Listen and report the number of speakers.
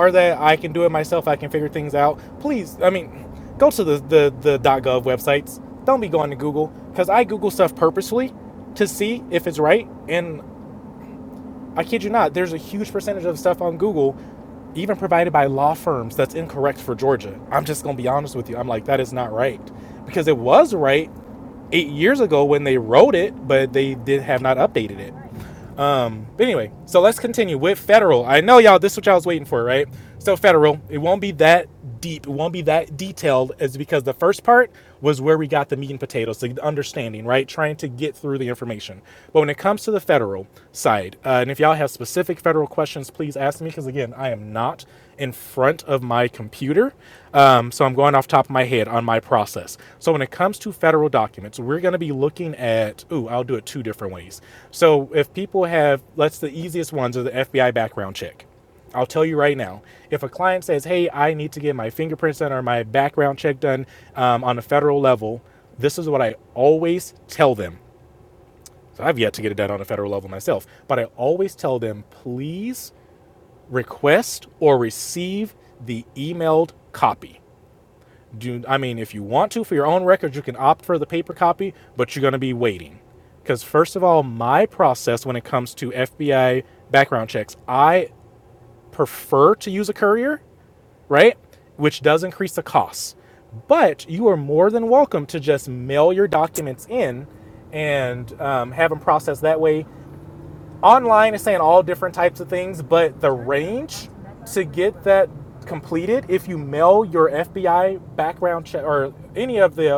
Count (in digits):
1